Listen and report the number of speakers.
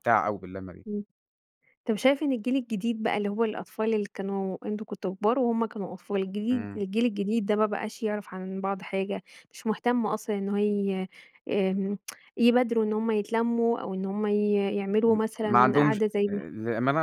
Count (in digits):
2